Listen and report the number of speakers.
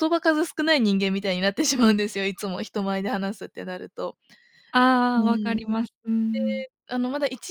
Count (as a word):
two